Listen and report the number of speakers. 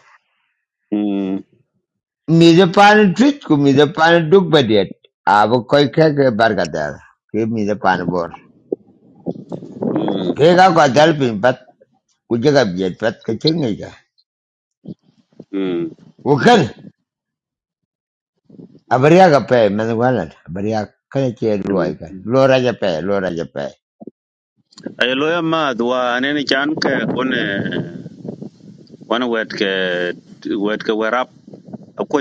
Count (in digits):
2